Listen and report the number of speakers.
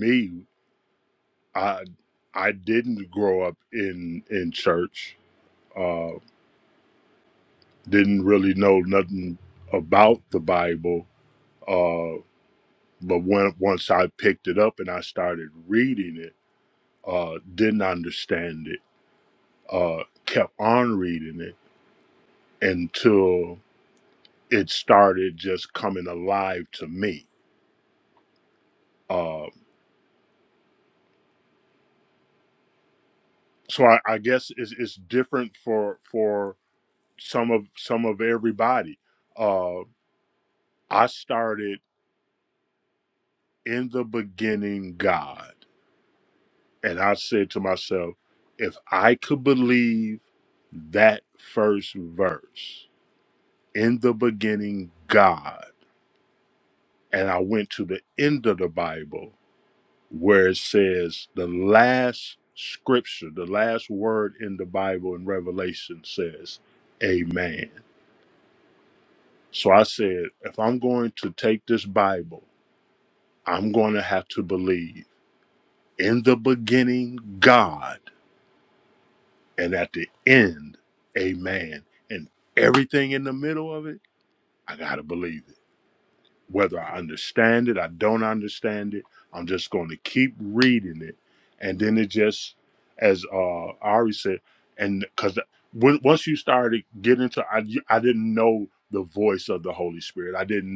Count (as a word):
one